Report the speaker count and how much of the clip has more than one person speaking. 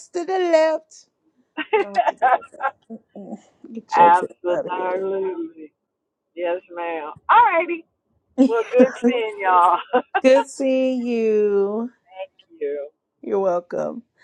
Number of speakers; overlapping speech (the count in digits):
2, about 7%